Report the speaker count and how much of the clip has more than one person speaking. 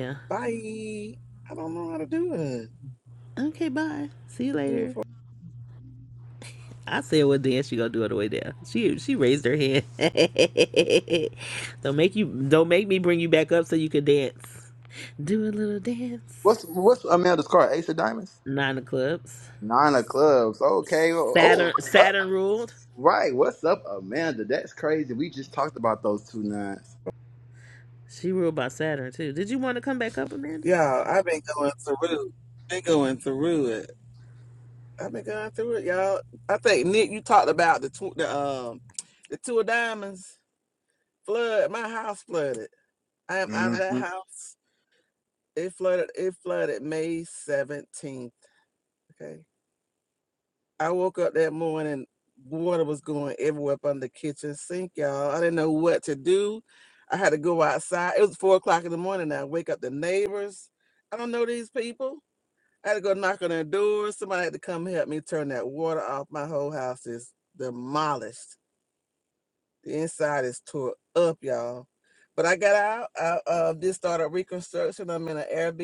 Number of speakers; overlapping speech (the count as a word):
three, about 2%